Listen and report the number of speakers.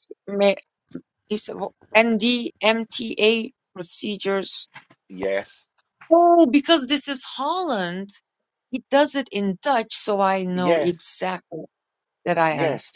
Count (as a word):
two